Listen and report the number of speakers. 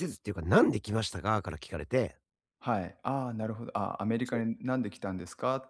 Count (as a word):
two